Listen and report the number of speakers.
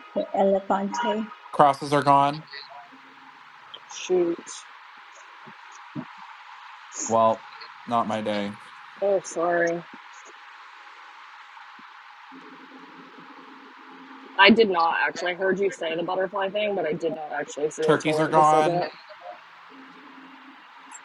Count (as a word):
three